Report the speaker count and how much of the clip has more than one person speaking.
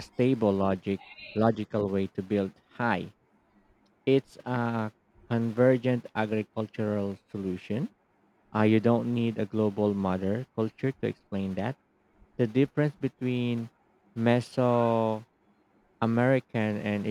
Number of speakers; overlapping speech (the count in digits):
1, no overlap